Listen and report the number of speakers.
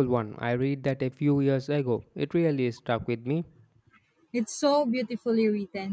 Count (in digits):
2